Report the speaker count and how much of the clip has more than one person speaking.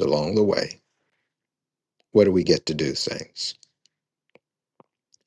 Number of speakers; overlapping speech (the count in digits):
1, no overlap